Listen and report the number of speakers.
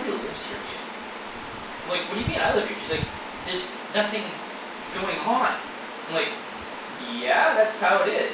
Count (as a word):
one